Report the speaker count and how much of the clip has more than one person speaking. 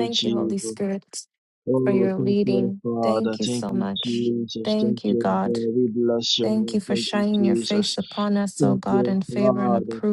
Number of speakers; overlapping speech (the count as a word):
two, about 71%